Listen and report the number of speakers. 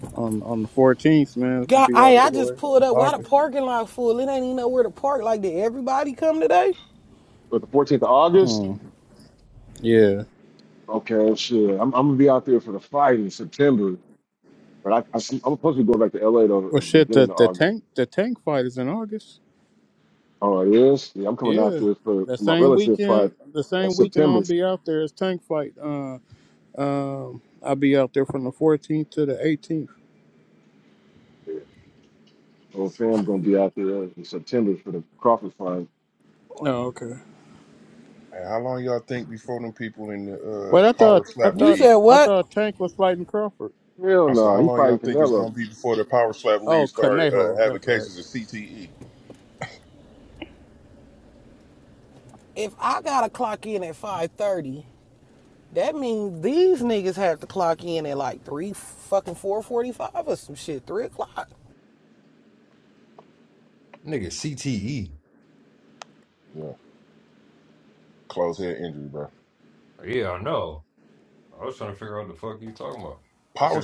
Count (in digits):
5